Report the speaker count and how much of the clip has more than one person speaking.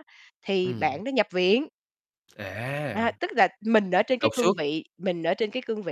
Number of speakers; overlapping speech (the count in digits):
2, about 14%